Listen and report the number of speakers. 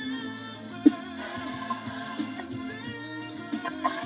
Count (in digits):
0